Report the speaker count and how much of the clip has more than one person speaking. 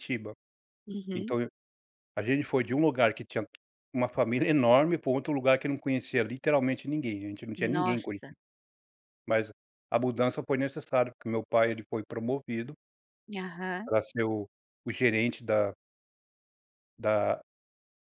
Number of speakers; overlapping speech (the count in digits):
2, about 5%